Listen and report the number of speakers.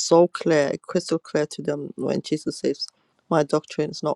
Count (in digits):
1